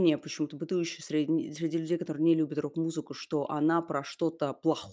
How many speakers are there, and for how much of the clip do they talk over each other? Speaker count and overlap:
1, no overlap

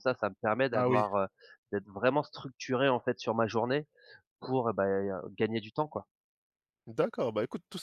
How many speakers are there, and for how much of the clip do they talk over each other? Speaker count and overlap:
2, about 4%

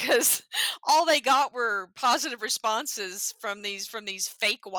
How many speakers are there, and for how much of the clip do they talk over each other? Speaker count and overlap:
1, no overlap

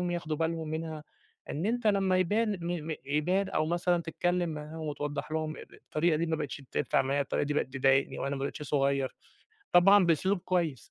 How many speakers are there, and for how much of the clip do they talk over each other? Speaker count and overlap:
1, no overlap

